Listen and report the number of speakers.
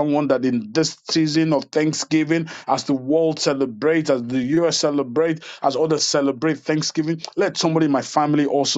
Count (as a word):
one